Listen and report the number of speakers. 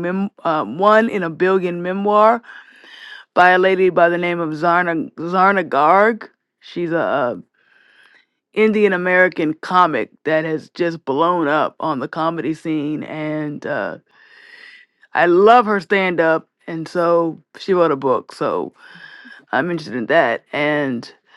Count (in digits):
1